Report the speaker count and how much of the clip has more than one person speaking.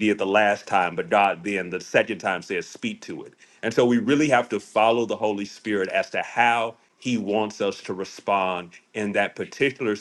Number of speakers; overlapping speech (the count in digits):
1, no overlap